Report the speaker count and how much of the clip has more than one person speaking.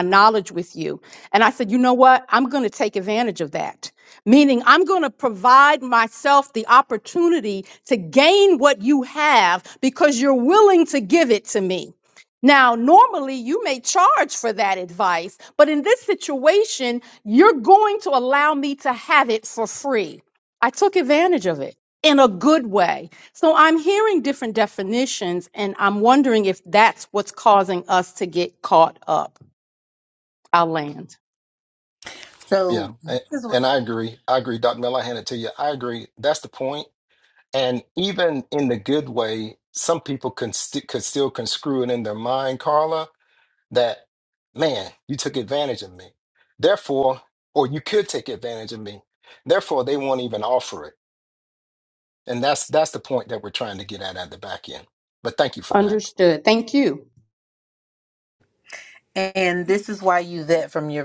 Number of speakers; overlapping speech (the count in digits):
3, about 2%